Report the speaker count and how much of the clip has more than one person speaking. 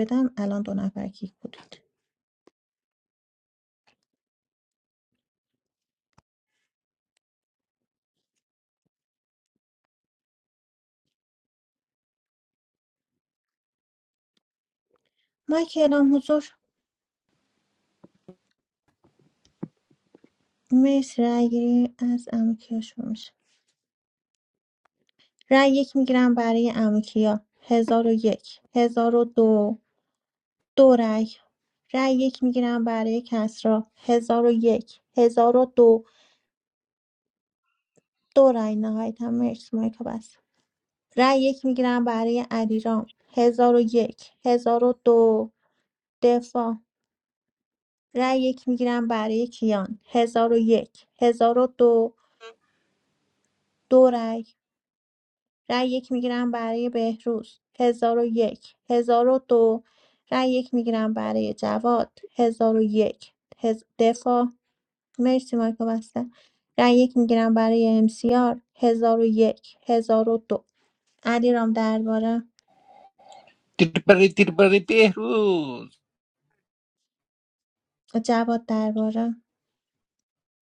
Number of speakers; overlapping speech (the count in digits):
2, no overlap